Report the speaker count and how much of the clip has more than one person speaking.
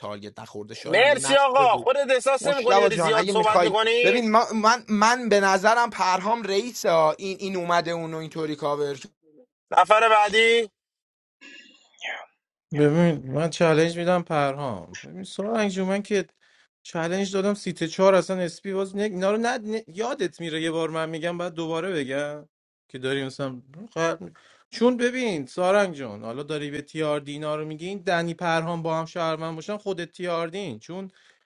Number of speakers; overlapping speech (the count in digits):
3, about 9%